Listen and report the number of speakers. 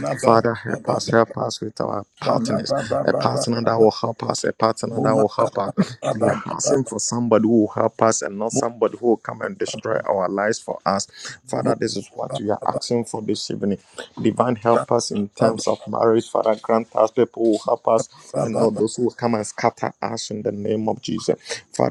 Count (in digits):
2